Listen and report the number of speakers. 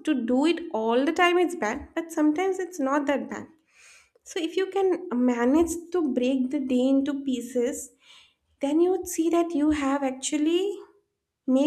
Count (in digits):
1